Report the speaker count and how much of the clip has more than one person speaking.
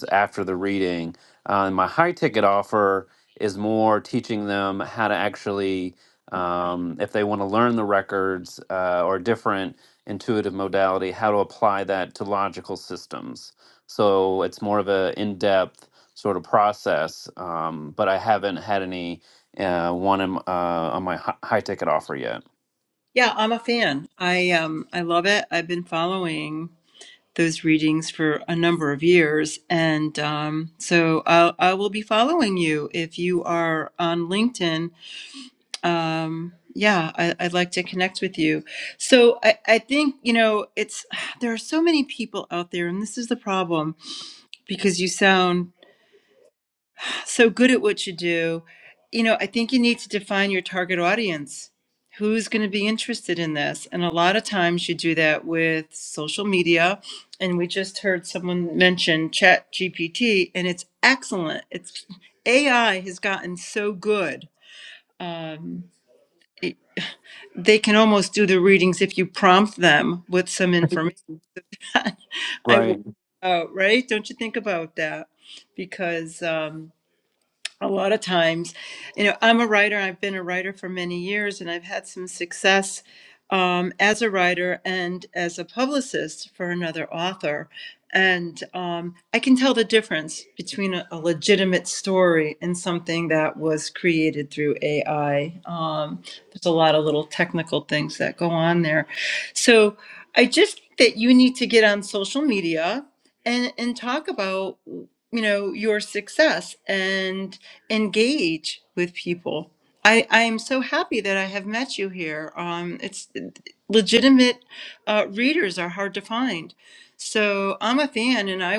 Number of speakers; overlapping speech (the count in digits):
2, under 1%